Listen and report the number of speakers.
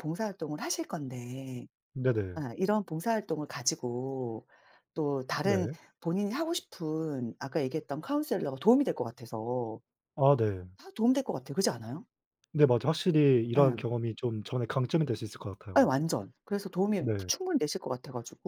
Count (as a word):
two